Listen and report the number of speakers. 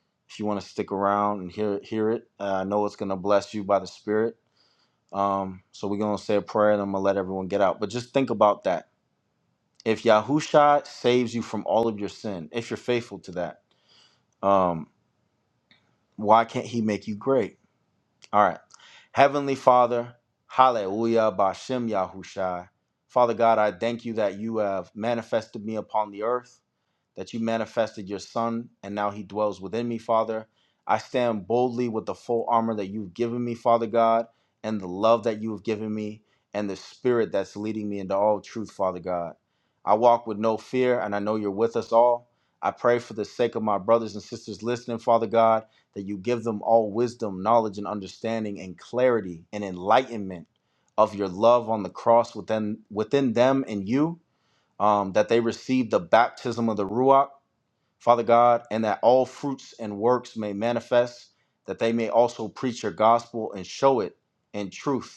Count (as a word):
one